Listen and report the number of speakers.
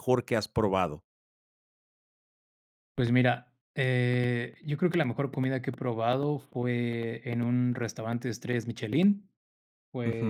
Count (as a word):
two